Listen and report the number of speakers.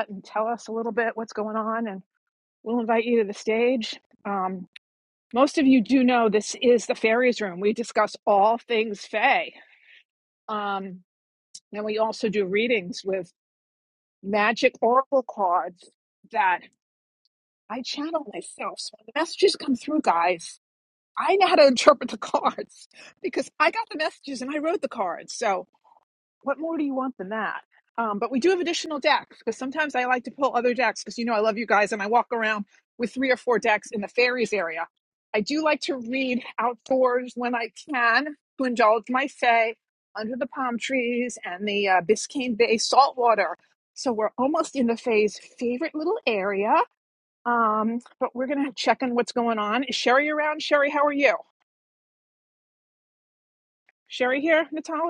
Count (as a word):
one